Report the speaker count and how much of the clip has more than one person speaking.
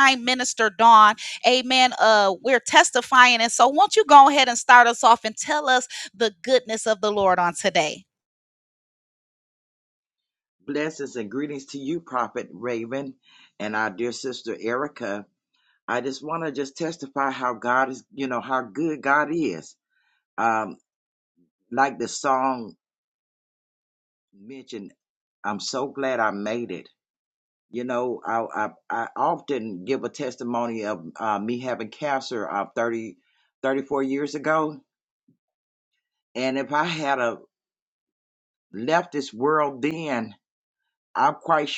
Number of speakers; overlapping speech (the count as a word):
two, no overlap